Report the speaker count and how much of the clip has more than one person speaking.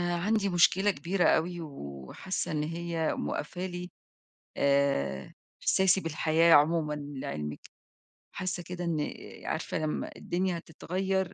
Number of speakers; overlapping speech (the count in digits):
1, no overlap